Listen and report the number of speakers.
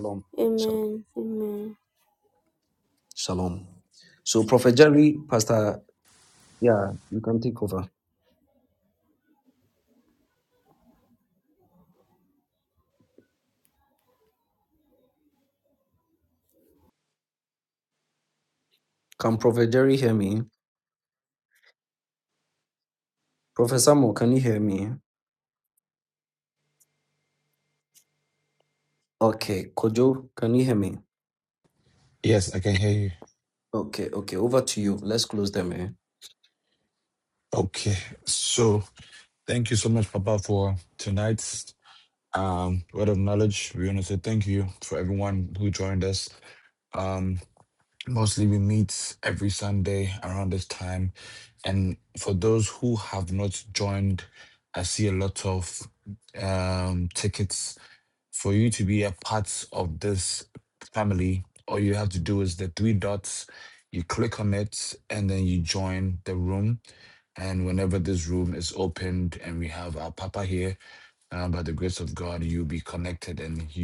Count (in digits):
3